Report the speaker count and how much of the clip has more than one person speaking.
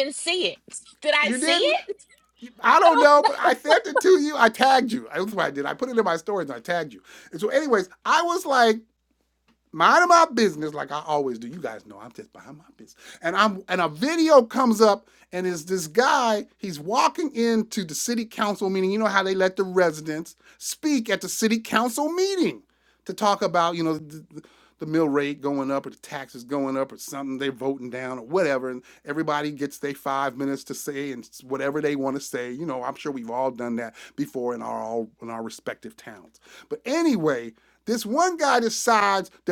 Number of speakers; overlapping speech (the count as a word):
two, about 2%